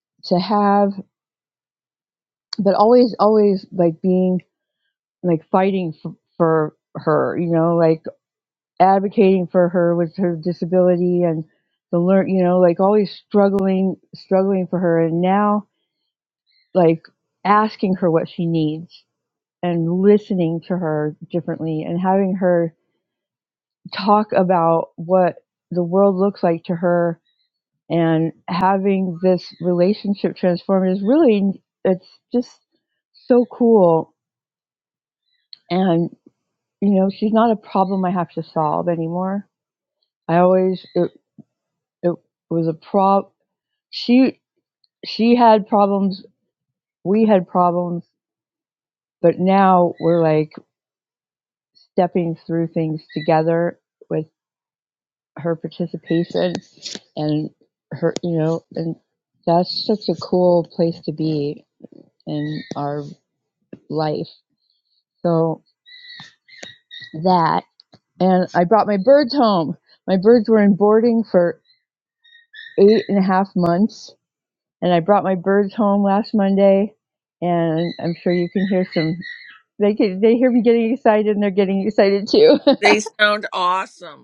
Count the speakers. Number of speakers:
2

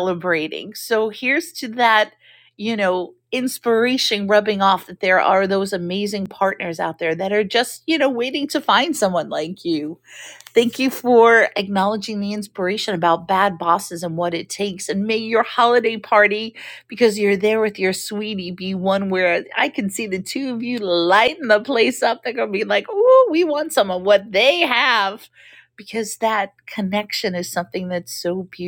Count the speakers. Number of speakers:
1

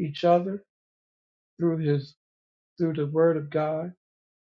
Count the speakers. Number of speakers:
1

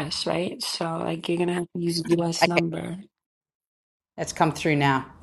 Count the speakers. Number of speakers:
2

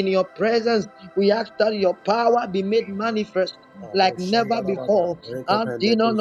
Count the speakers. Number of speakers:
2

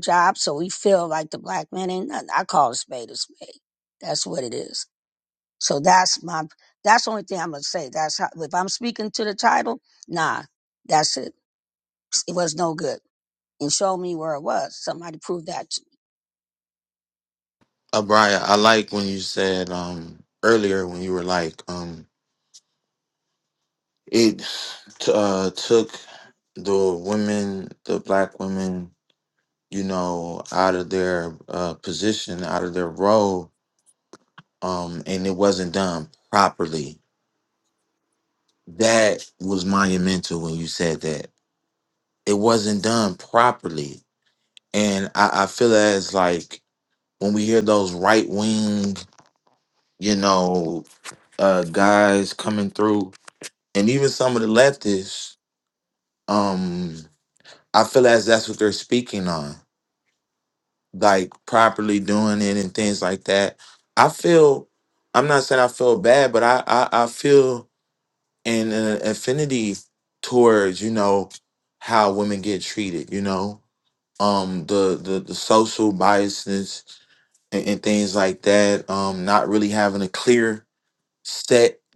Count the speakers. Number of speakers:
2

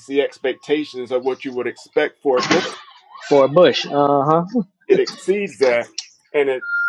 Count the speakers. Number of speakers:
2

